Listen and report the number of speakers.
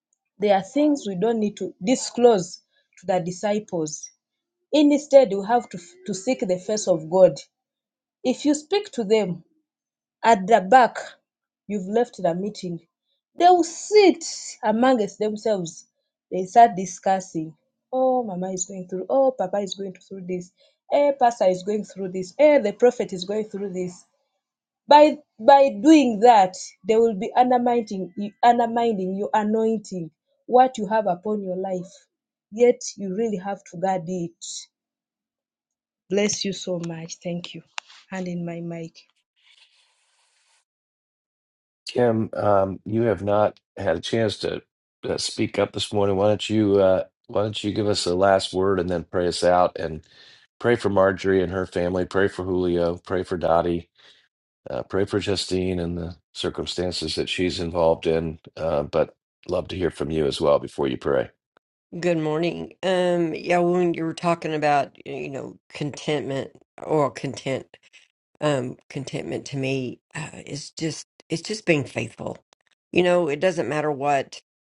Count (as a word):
three